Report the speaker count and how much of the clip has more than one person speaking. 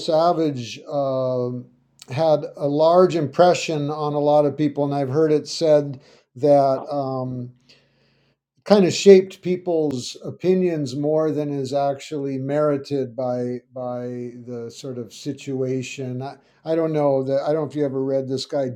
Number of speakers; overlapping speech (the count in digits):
1, no overlap